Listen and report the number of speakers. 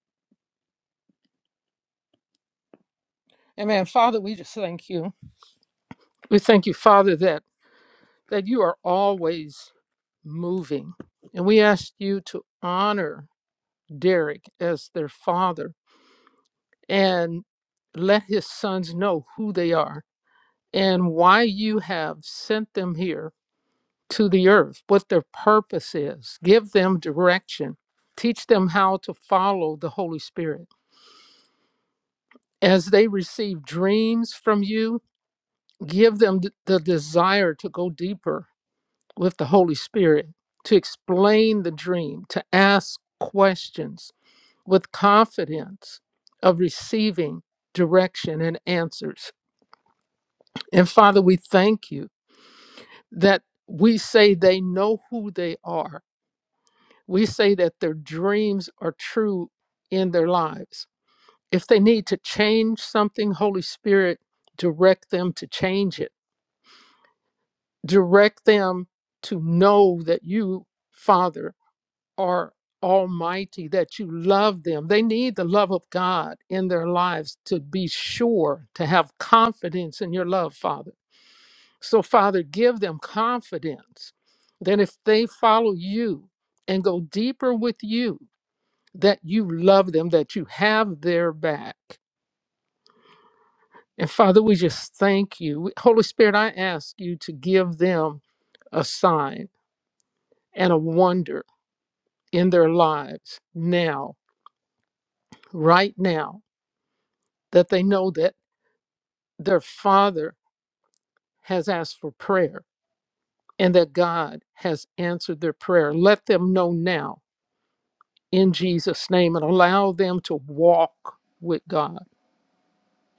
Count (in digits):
1